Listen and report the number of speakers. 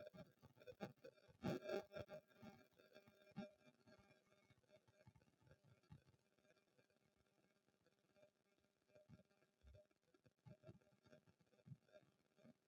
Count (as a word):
zero